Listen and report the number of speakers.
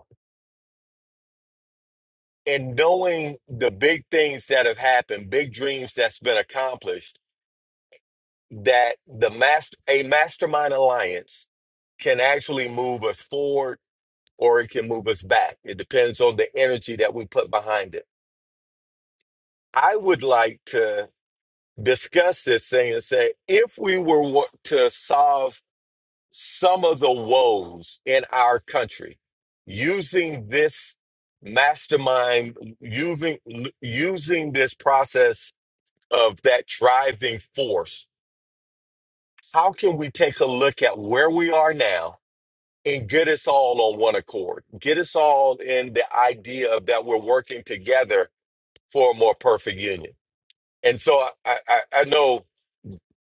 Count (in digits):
1